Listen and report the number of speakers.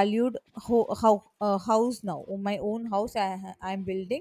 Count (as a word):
one